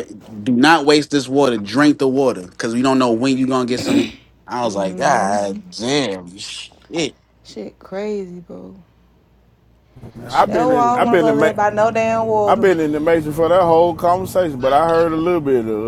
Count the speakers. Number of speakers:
3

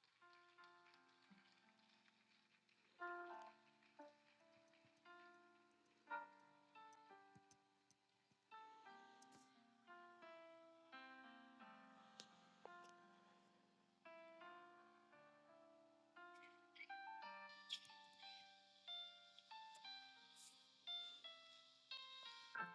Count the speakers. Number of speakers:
0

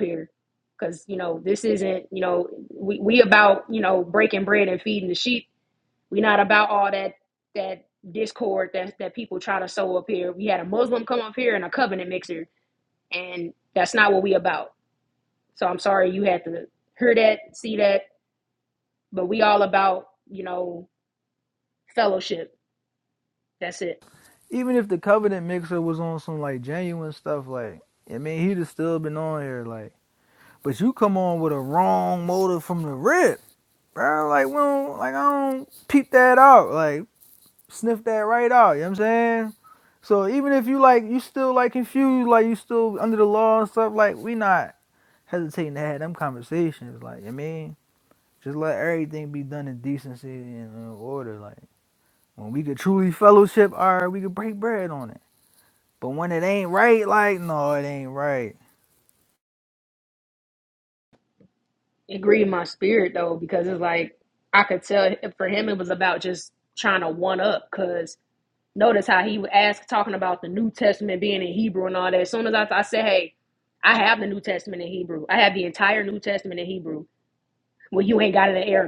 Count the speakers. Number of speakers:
2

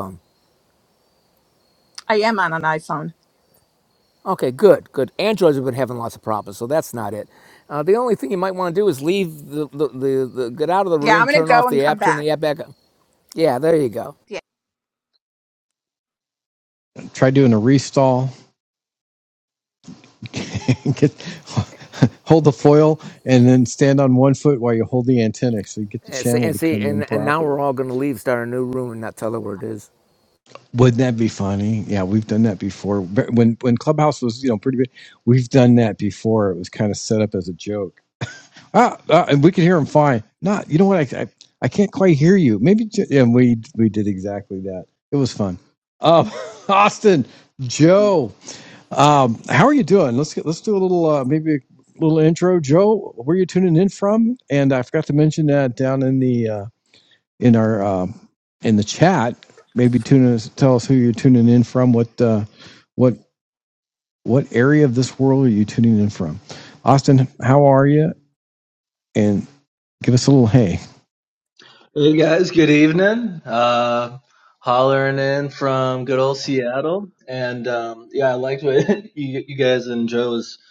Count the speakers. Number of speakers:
4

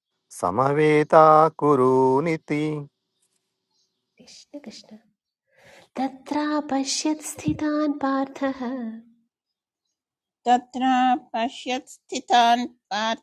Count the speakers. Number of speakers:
3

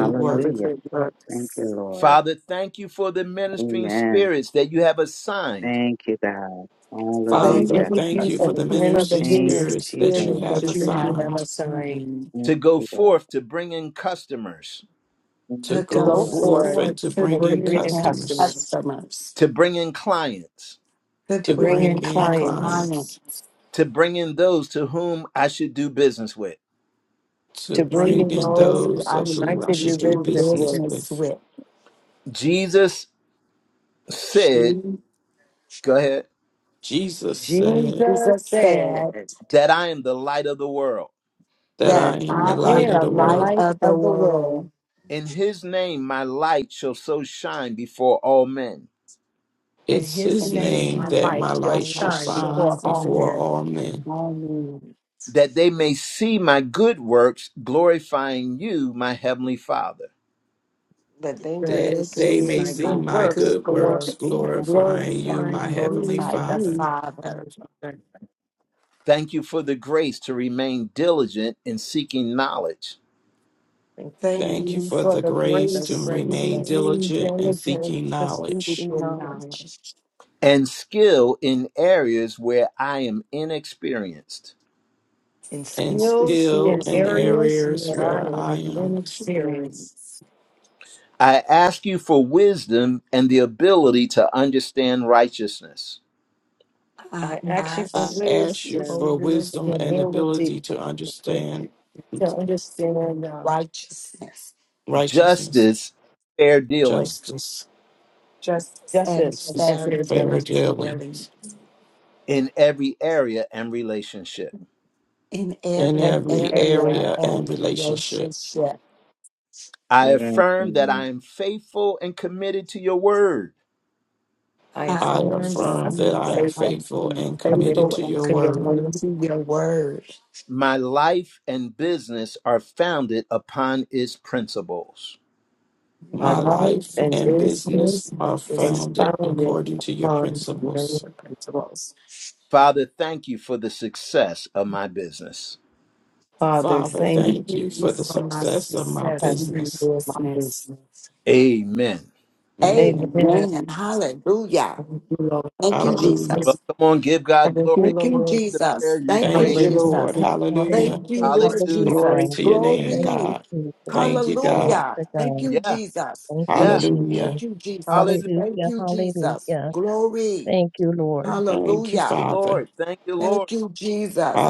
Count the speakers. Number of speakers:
6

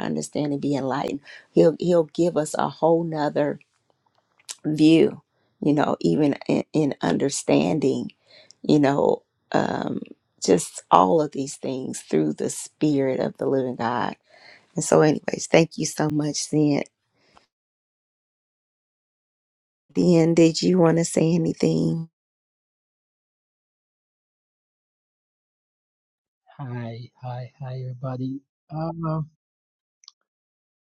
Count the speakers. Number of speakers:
2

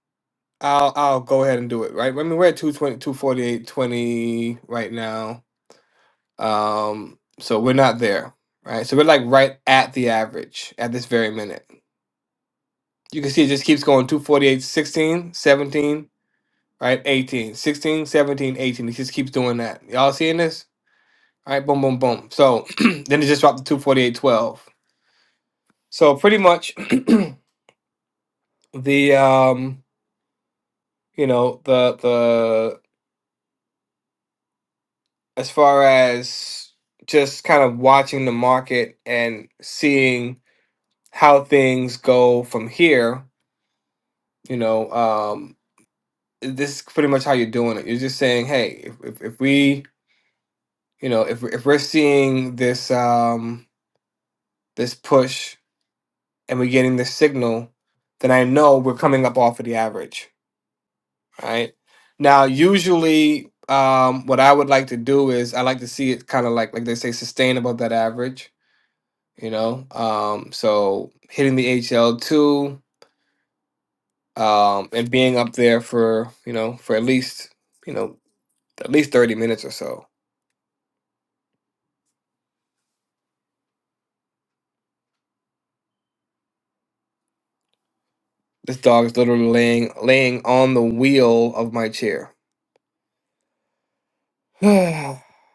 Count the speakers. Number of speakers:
1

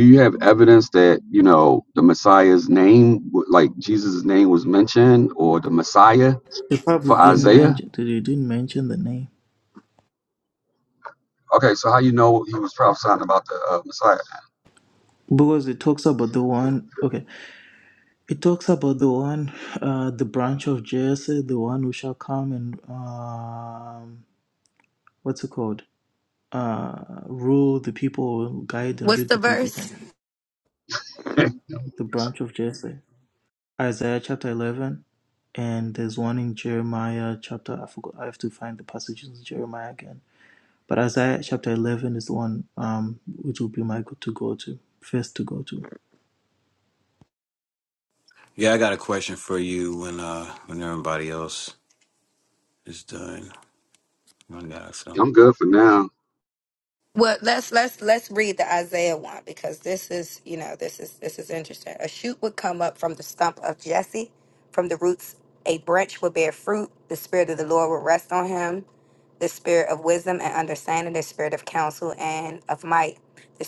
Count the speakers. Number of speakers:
4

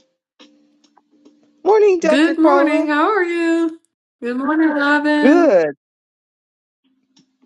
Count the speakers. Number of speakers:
2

